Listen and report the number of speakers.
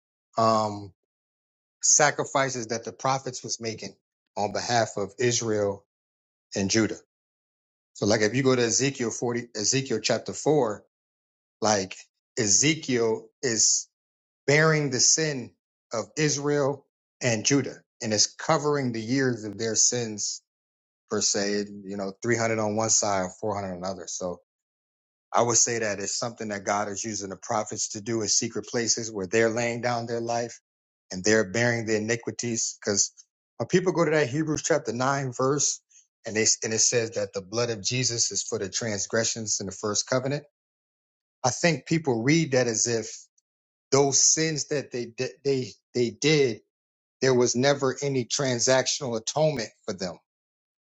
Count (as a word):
one